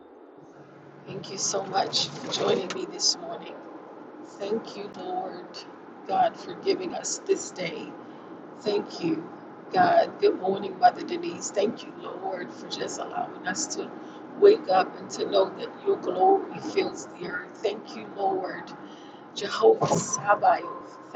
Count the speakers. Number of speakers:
one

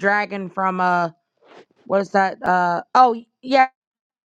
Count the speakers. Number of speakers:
one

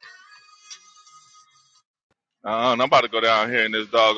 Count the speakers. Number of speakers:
one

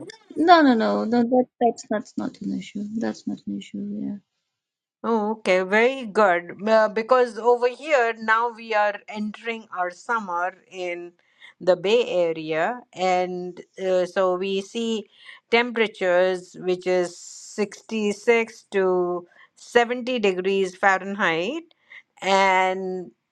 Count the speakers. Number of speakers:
two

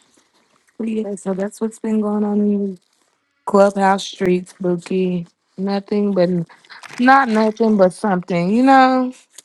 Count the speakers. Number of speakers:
one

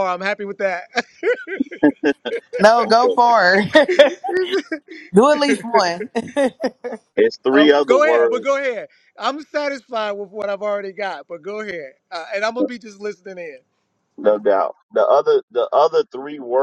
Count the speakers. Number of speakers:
three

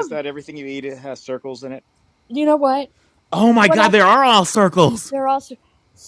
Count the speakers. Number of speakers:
three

